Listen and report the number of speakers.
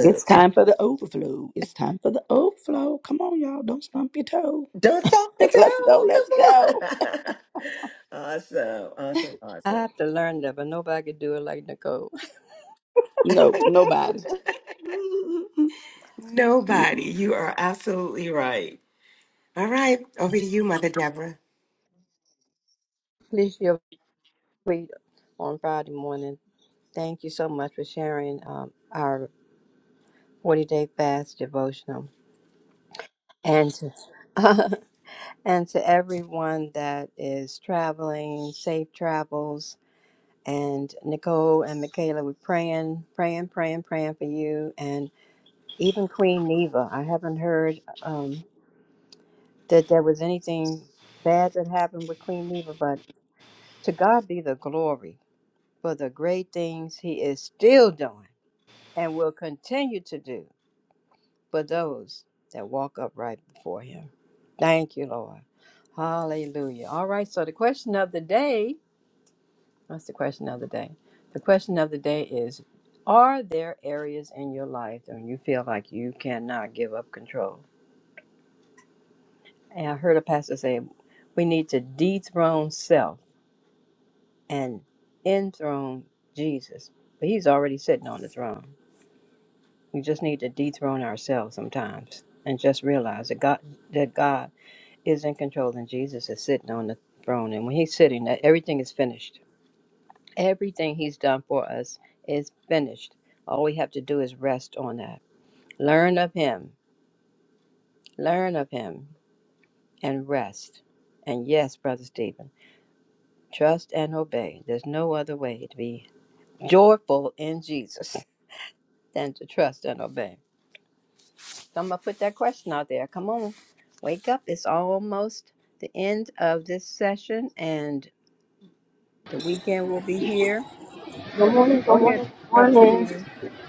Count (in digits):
4